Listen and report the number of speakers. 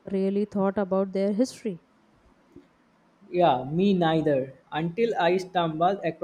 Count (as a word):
two